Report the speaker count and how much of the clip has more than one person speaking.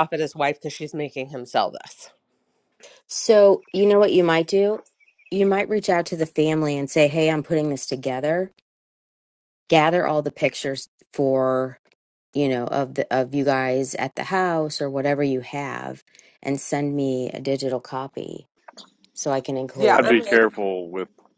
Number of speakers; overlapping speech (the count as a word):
three, about 3%